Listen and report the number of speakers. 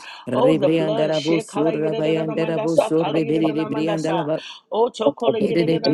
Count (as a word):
two